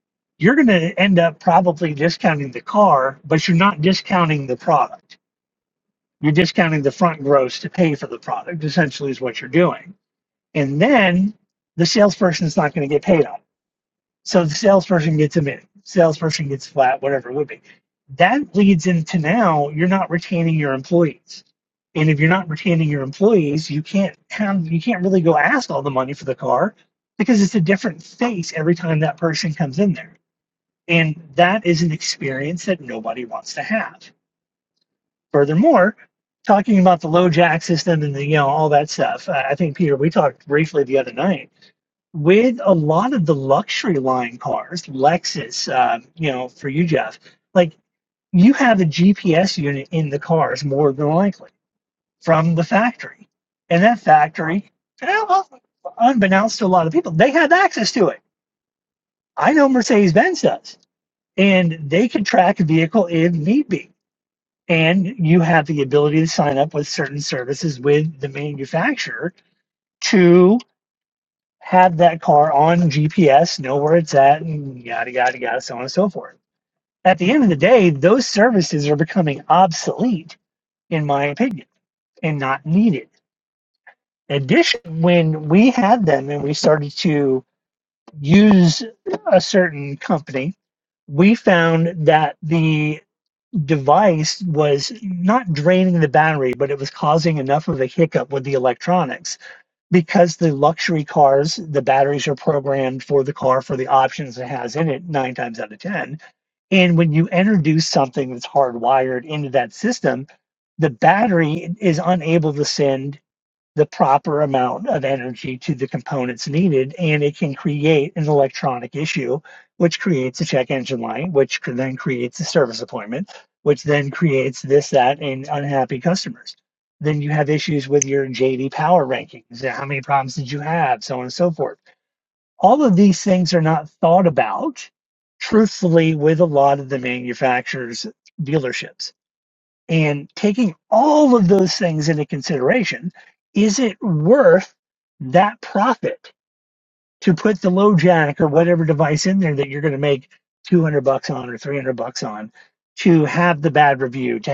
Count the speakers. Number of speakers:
one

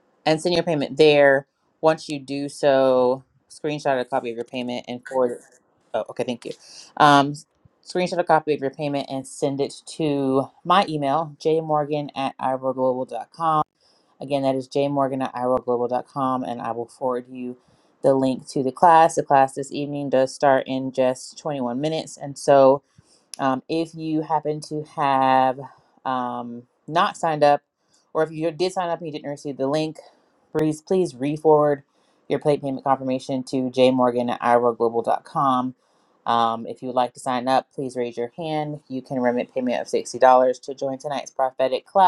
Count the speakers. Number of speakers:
one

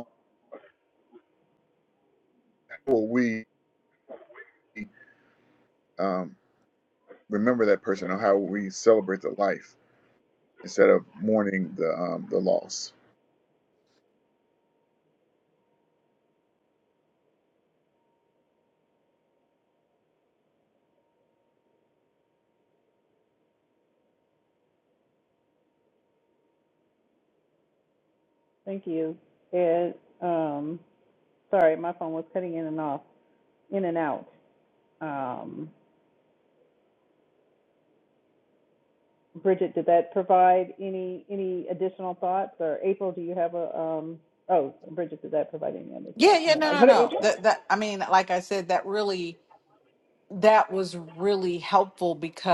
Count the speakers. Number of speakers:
three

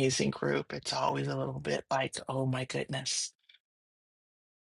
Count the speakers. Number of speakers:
one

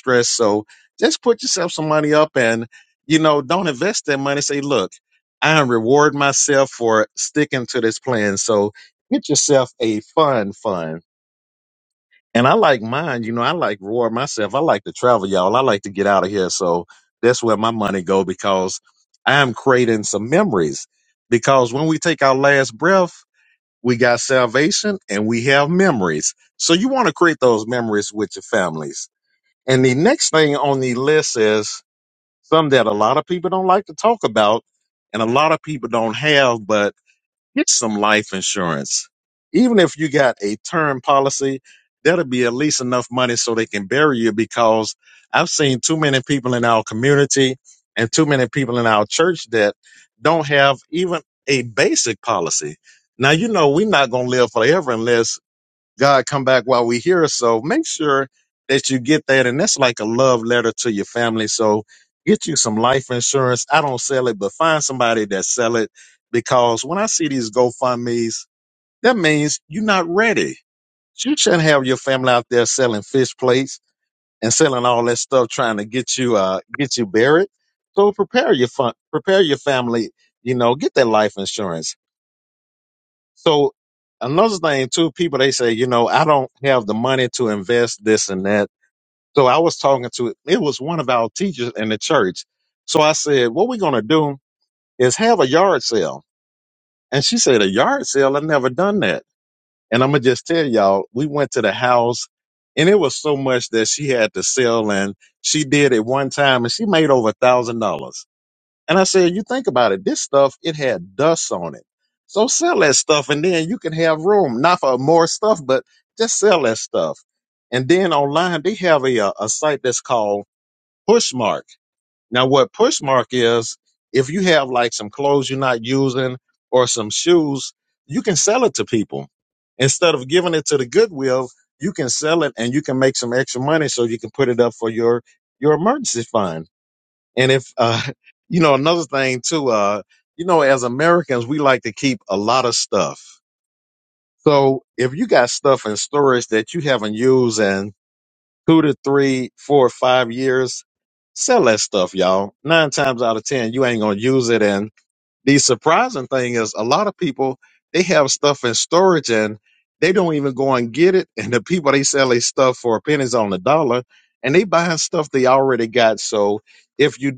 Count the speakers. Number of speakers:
one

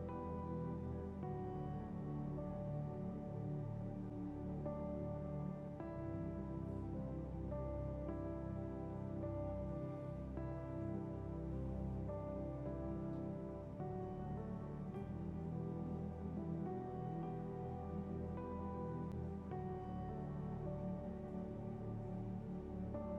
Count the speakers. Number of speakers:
zero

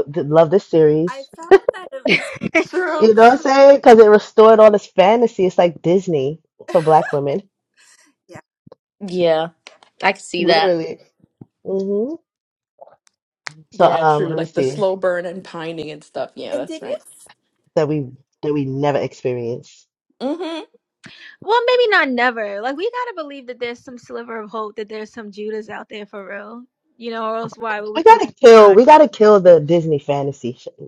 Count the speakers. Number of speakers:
five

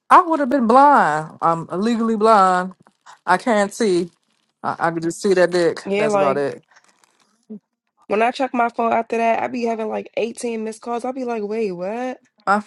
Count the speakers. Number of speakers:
two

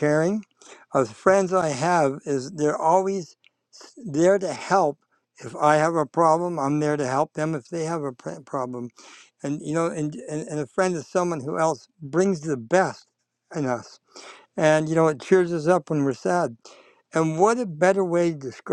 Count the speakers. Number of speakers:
one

